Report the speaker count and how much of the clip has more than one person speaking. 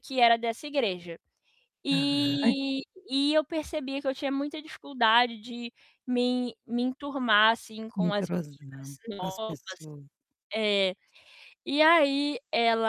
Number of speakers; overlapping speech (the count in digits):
2, about 11%